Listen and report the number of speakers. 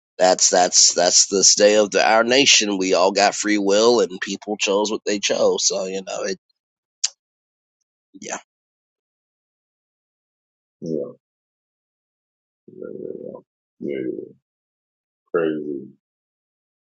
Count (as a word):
two